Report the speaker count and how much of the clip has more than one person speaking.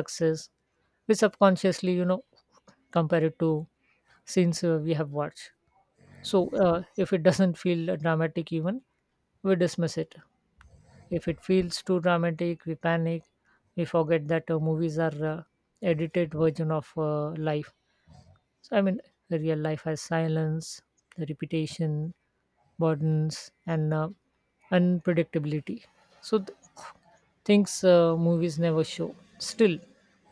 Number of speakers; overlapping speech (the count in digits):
1, no overlap